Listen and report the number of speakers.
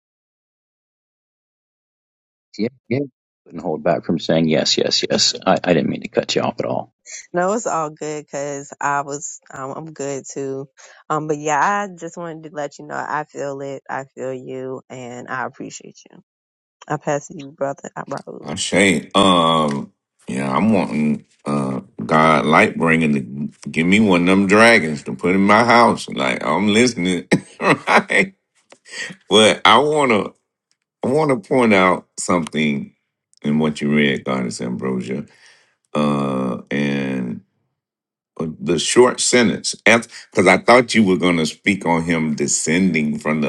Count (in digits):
3